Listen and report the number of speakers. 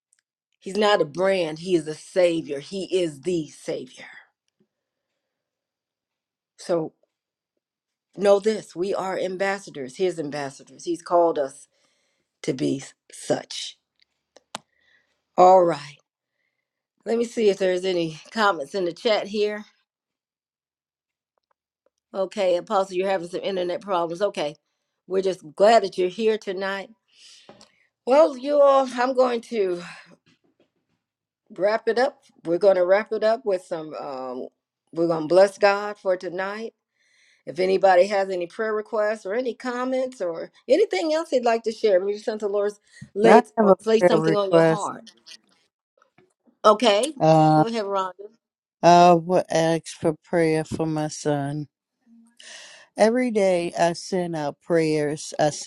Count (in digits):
2